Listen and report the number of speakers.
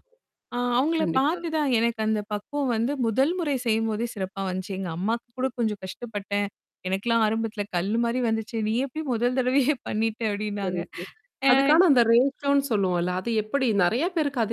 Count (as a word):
two